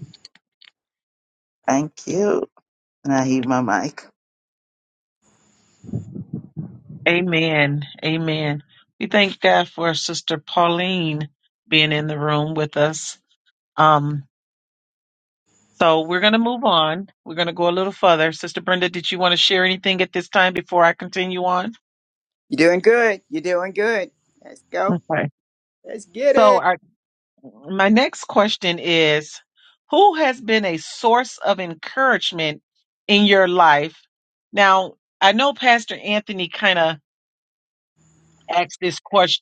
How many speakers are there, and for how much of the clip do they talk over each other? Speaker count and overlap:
3, about 1%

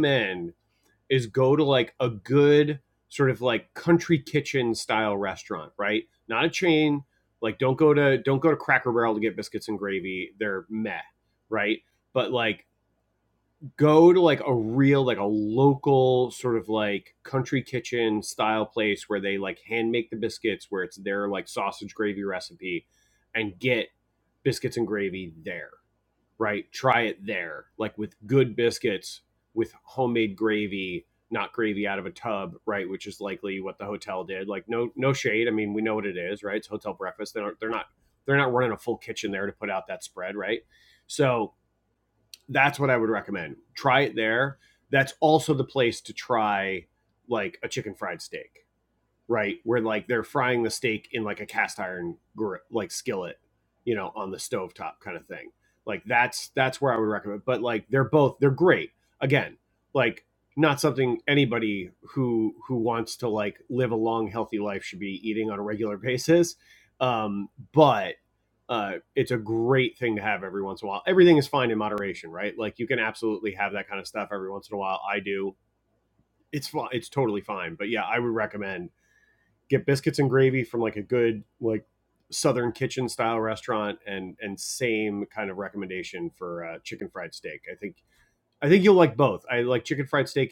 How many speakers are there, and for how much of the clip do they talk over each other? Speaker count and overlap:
1, no overlap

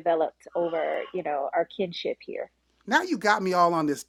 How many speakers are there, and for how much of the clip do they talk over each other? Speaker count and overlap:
2, no overlap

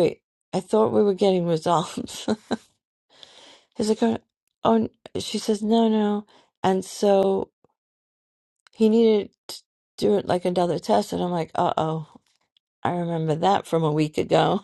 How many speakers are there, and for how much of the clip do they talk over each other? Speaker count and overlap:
1, no overlap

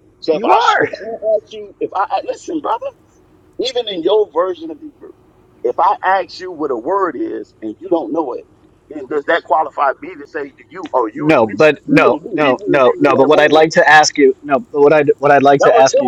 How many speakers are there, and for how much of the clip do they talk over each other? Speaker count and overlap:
2, about 21%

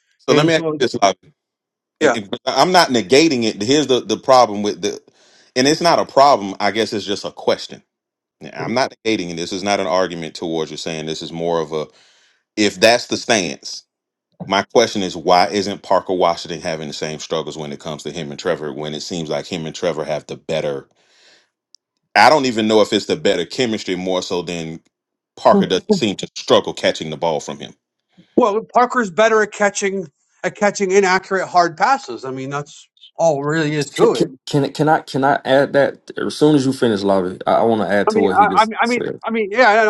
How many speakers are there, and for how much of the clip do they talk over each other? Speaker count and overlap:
3, about 5%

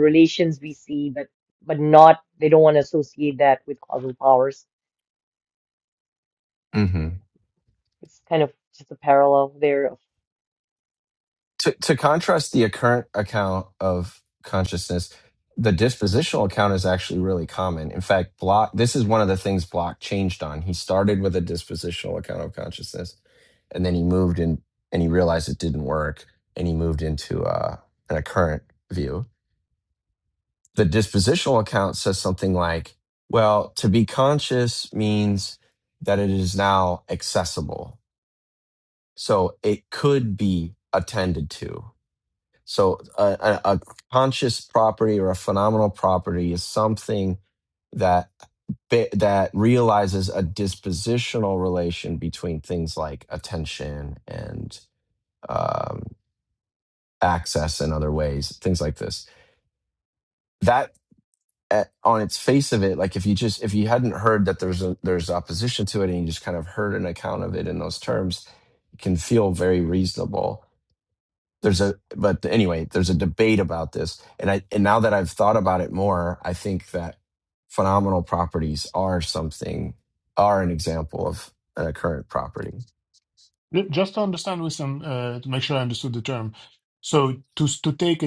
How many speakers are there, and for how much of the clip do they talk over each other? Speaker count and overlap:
3, no overlap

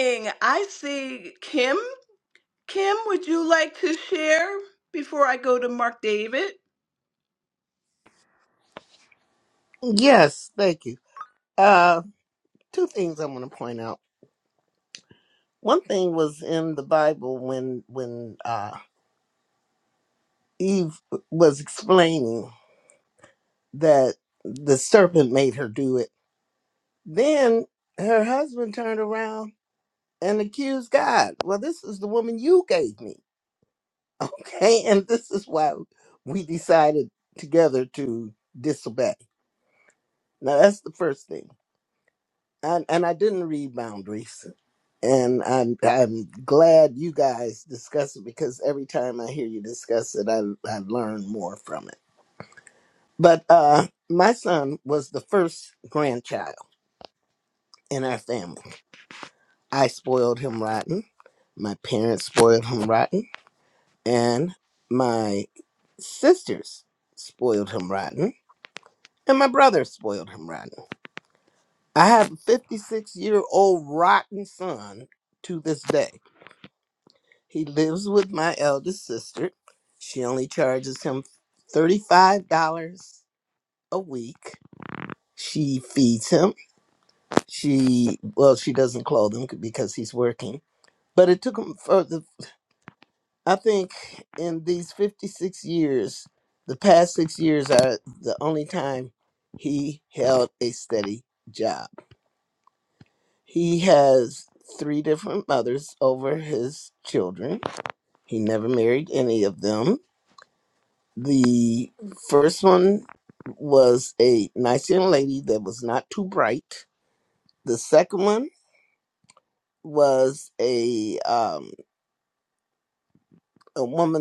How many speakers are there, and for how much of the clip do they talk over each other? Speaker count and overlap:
2, no overlap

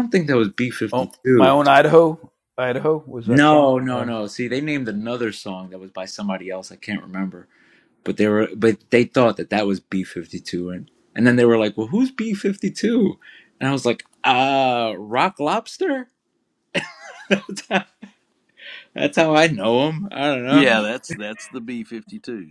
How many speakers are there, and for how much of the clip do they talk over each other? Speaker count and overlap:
3, about 8%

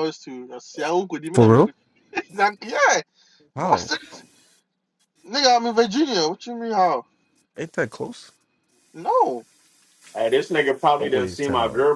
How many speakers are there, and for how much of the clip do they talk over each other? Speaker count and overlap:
3, about 12%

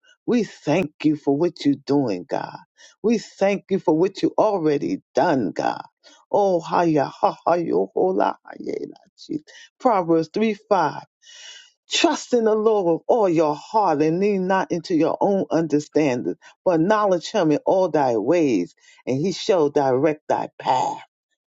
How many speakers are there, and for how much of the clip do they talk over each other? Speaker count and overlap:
1, no overlap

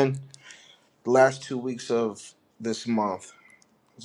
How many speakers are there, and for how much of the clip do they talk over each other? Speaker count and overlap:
1, no overlap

